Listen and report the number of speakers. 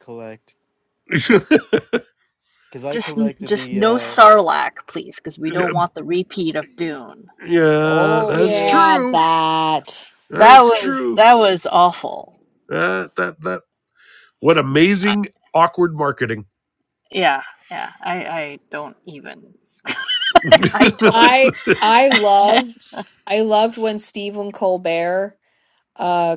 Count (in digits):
4